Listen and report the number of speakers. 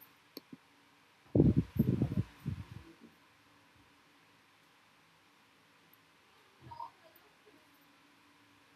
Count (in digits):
0